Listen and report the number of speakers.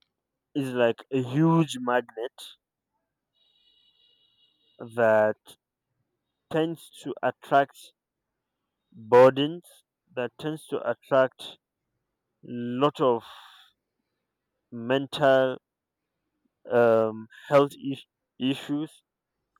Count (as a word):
one